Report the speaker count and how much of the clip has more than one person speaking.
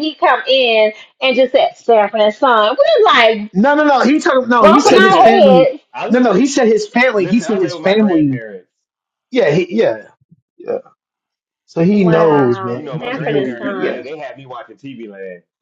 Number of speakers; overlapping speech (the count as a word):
three, about 30%